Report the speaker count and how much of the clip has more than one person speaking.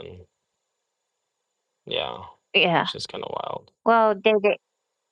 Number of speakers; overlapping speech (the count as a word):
two, about 2%